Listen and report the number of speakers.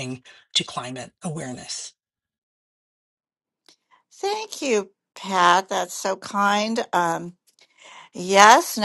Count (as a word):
two